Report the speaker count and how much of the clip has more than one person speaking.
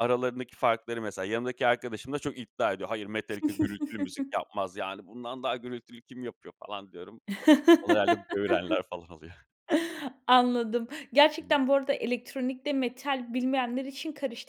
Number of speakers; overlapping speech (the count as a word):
two, no overlap